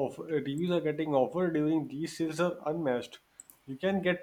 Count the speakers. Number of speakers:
1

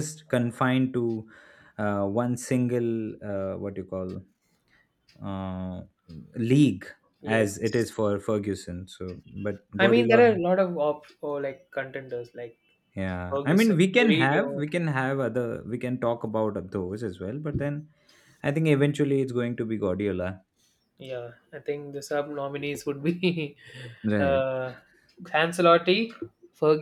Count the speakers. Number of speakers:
2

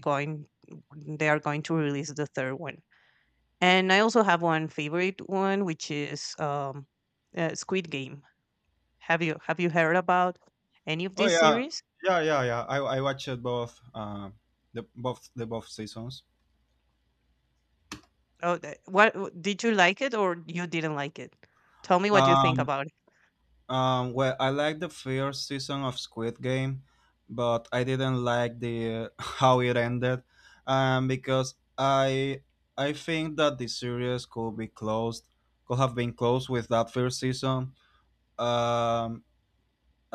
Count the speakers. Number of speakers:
2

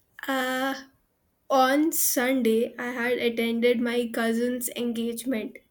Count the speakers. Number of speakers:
1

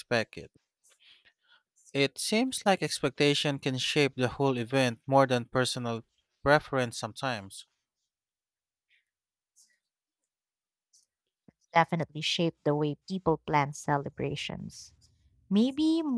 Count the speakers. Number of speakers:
2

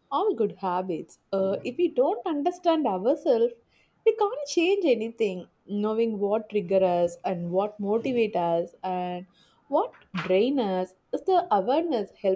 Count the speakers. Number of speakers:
1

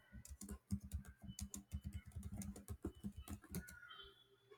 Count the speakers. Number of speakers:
0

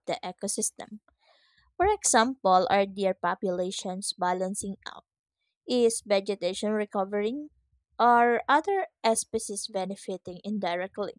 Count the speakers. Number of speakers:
1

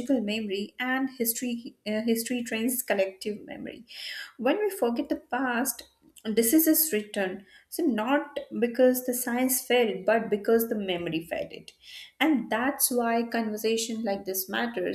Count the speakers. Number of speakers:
1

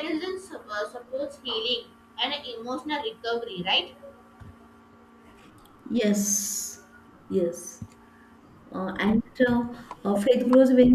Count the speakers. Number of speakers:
2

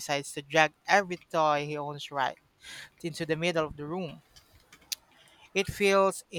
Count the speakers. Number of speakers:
1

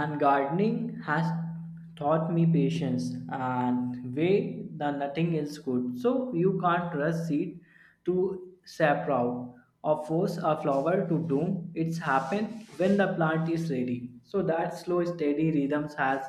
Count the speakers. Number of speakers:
1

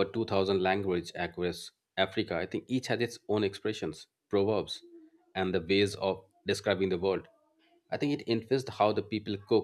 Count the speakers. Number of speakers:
1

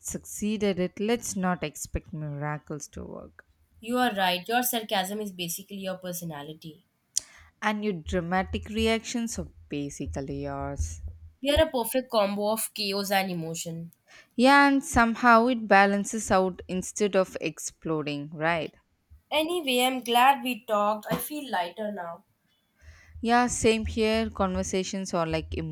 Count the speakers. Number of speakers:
2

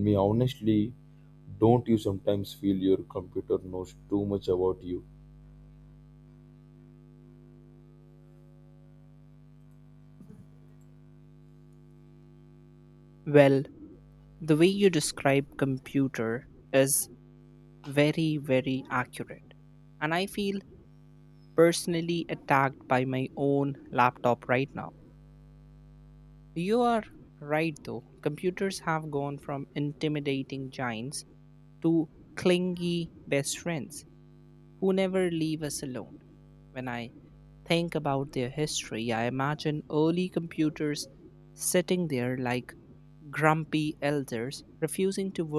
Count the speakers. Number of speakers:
2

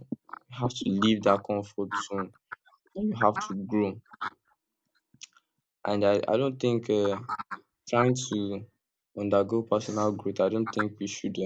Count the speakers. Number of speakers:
1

